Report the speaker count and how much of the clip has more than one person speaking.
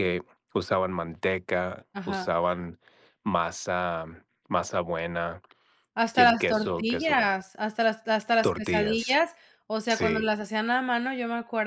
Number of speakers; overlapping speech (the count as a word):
two, about 22%